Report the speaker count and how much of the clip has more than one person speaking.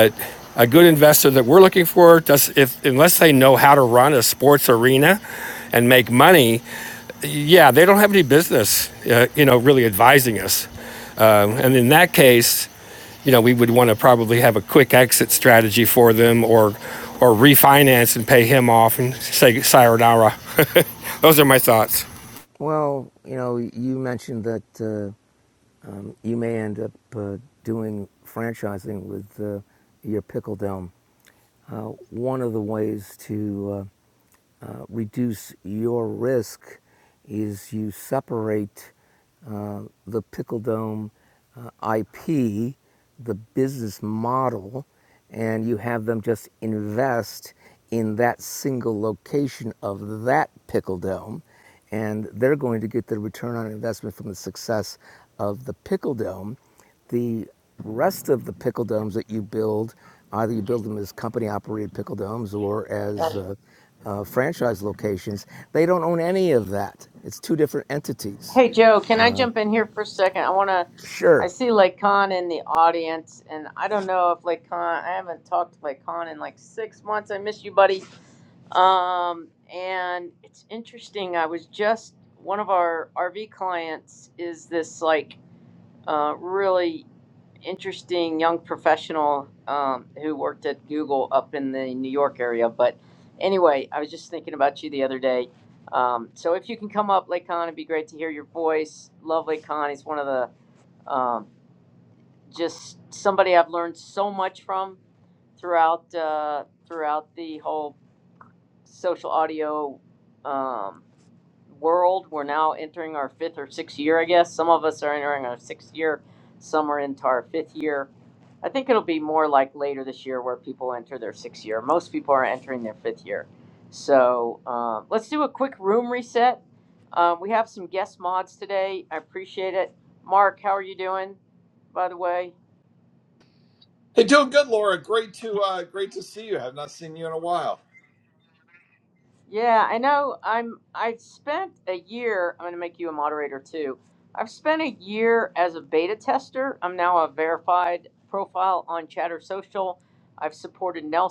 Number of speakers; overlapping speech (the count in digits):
4, under 1%